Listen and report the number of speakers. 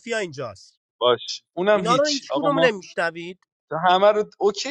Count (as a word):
two